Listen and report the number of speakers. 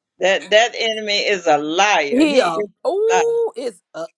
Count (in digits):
2